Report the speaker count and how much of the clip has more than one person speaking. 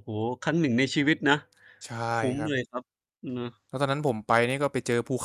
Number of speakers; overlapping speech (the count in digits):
2, about 3%